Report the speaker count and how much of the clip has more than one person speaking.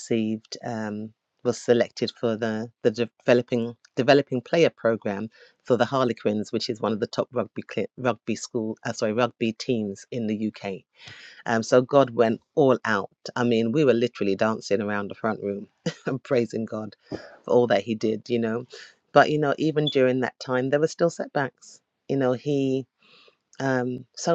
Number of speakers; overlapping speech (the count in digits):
1, no overlap